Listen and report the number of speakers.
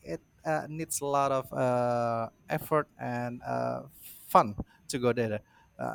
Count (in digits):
1